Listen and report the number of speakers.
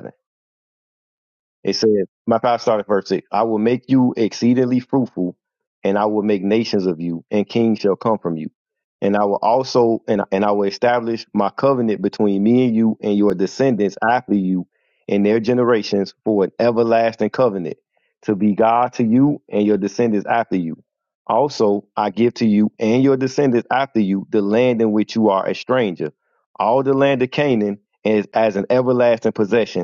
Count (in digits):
1